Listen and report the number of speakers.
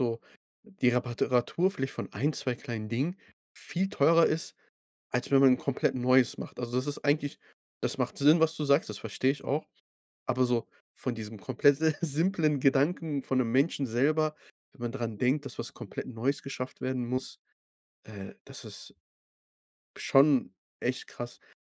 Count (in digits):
1